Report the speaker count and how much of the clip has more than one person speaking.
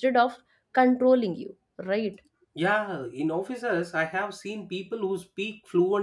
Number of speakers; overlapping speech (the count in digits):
2, no overlap